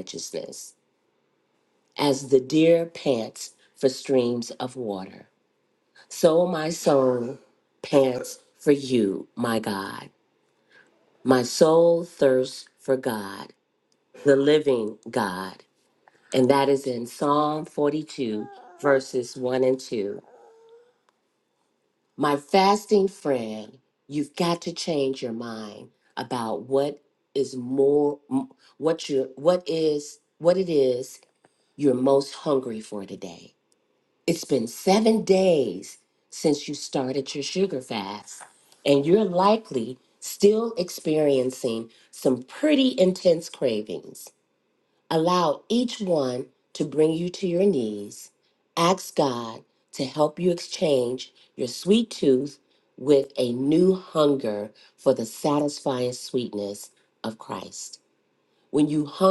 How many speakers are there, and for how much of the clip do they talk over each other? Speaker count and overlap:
one, no overlap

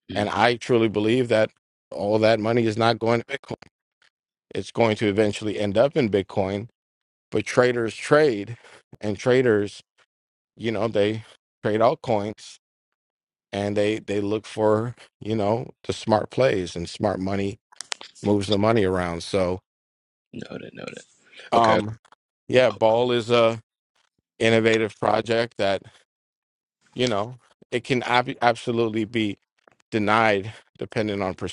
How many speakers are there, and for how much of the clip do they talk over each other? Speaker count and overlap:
two, about 1%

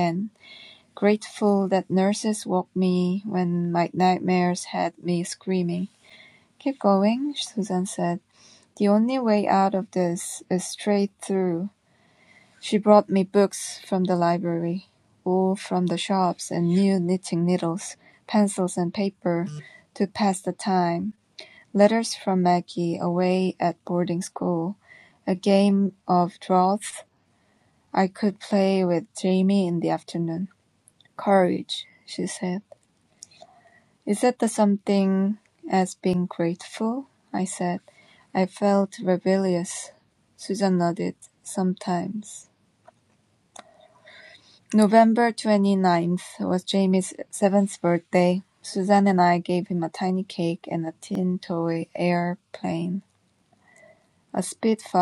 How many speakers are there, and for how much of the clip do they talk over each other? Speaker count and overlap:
one, no overlap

